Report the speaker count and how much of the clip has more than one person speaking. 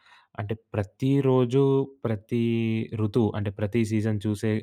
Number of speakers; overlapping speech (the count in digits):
1, no overlap